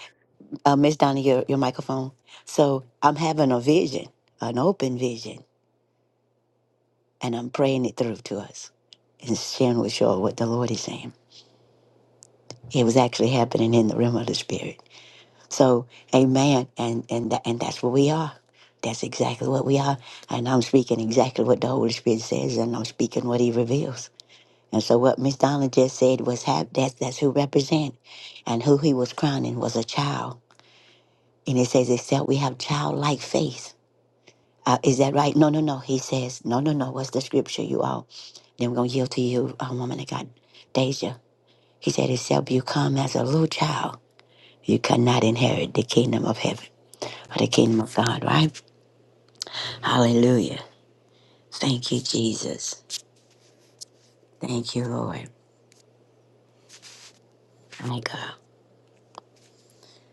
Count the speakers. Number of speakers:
1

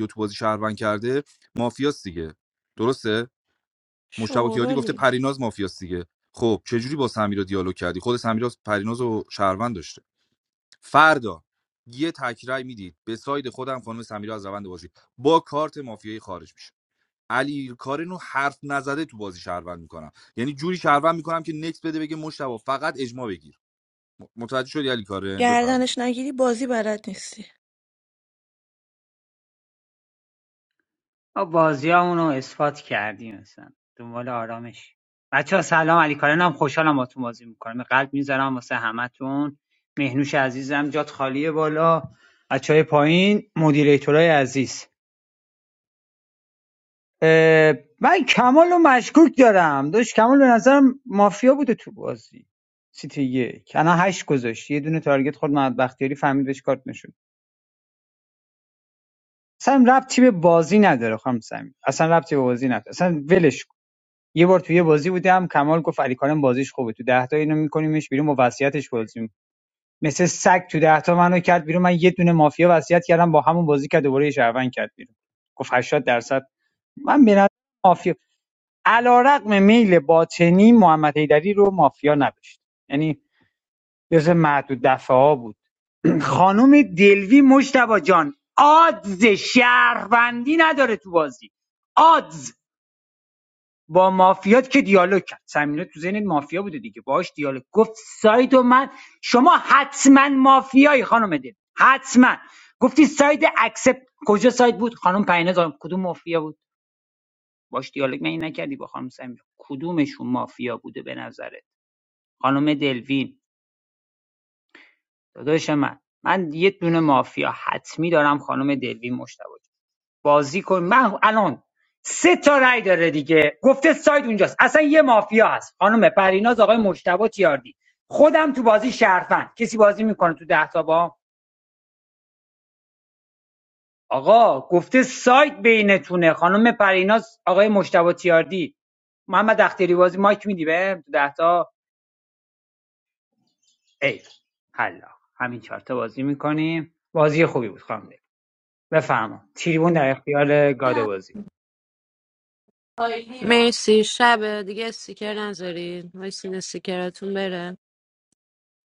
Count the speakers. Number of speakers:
4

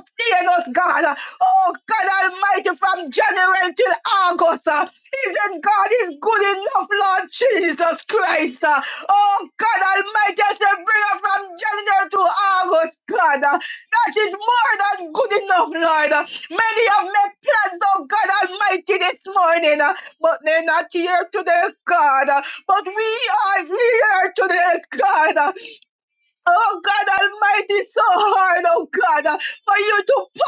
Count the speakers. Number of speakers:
1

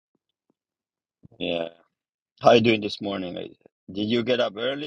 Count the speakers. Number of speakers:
1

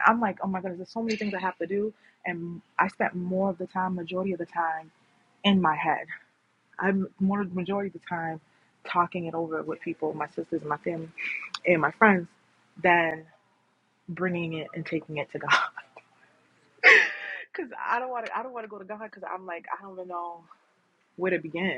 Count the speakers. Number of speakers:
1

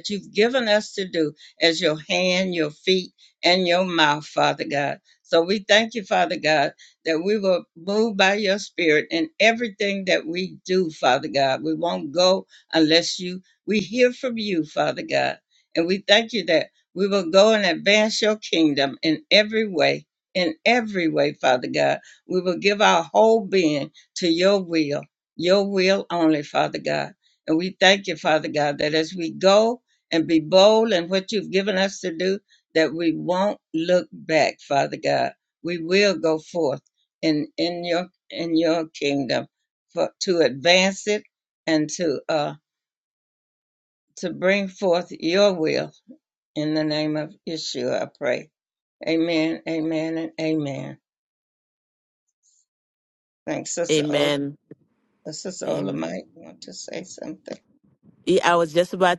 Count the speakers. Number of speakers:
2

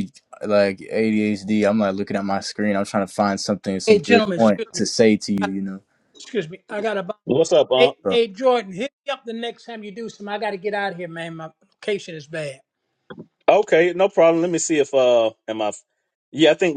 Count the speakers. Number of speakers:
3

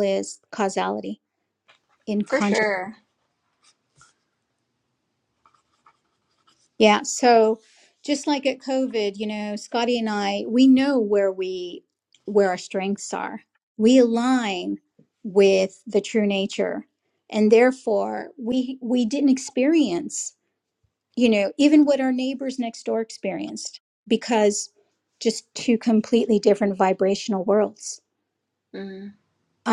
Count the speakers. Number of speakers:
2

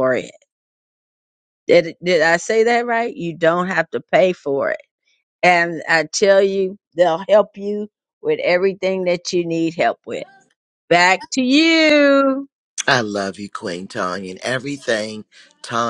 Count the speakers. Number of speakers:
2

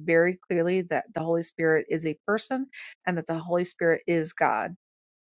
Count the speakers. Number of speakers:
1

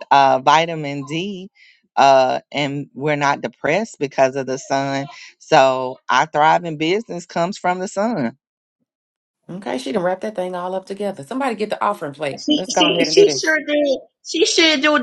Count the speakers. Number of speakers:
3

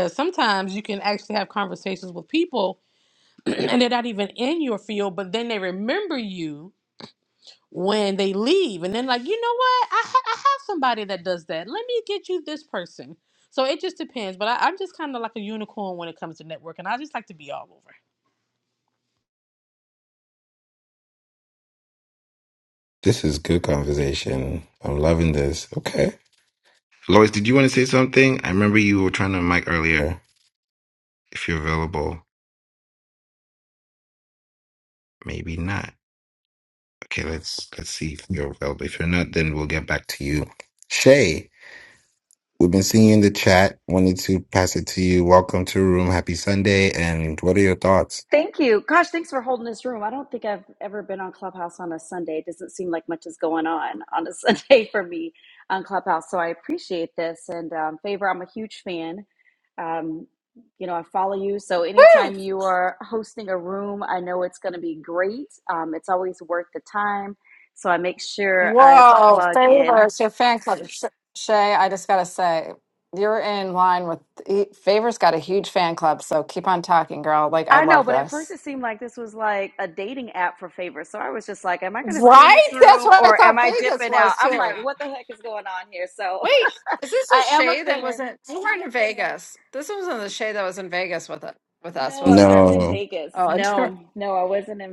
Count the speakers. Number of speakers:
4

